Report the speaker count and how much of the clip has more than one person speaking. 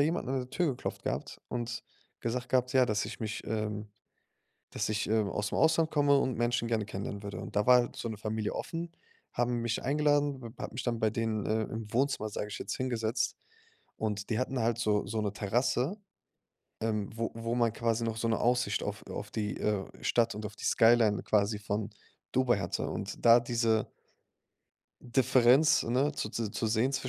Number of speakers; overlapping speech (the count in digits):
1, no overlap